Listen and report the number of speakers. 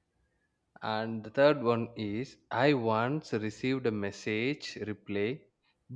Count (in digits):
1